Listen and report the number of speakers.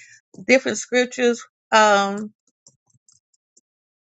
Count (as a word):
one